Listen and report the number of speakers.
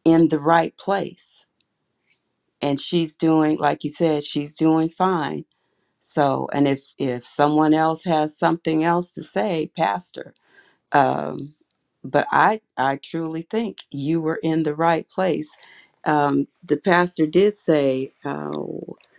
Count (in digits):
1